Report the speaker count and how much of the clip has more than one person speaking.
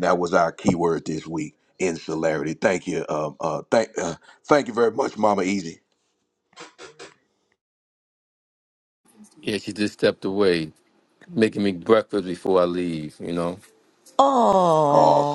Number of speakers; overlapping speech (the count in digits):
3, about 2%